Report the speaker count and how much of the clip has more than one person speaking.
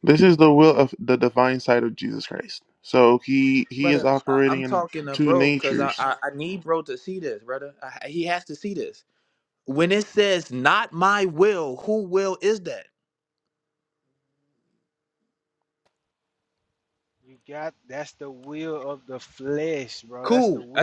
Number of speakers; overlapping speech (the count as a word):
three, about 12%